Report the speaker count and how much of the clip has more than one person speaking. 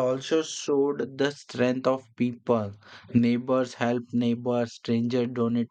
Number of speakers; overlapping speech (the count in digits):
1, no overlap